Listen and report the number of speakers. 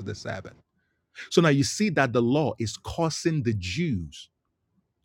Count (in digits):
1